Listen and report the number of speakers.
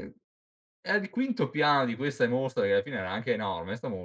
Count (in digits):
1